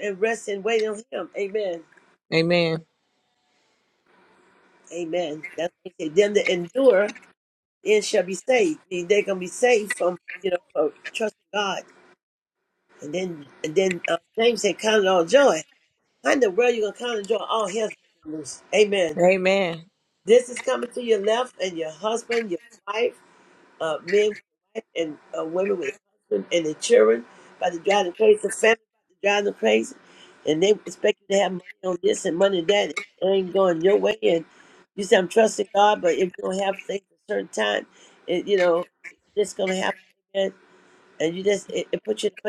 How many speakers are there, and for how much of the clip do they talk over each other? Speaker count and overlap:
two, no overlap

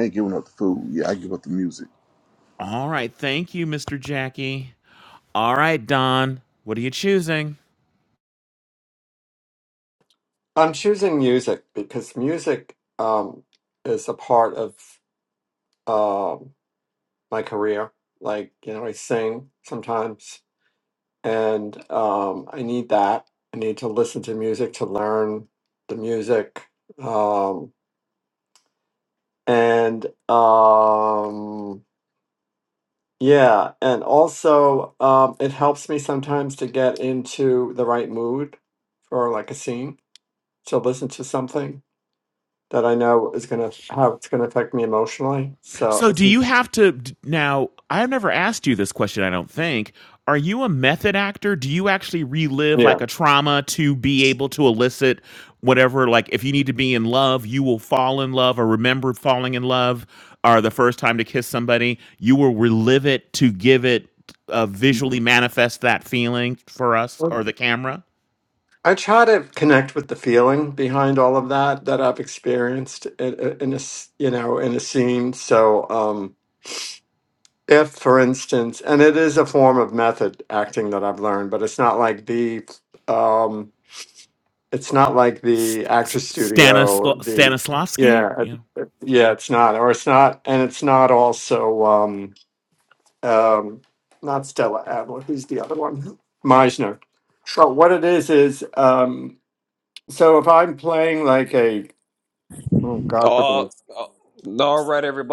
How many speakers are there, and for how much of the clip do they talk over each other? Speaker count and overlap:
four, about 2%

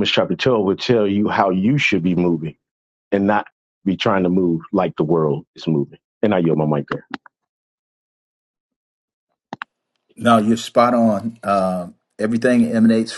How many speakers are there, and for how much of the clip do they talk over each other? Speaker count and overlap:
two, no overlap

